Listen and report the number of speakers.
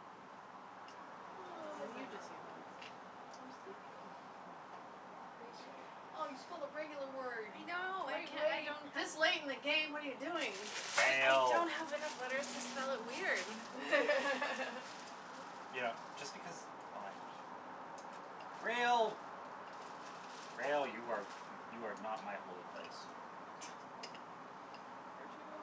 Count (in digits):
4